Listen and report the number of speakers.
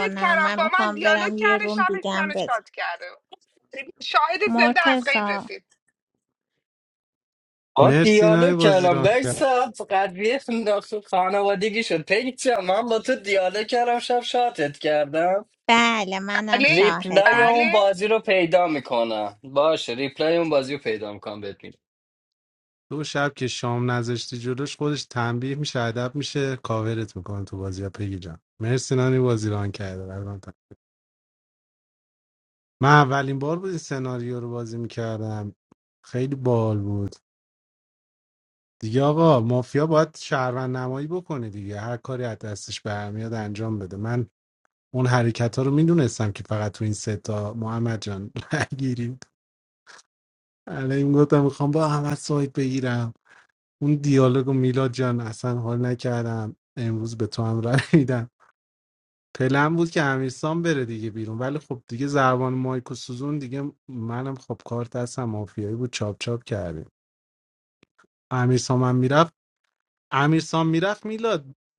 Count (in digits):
4